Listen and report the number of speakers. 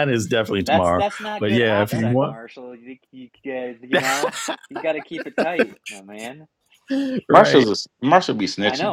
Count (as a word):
three